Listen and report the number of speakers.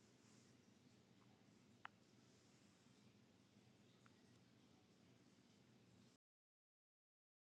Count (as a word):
zero